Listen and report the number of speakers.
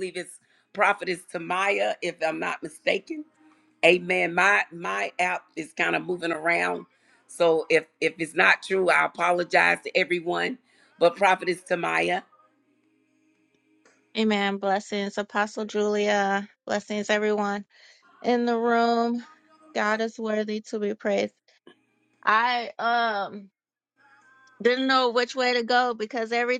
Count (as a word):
two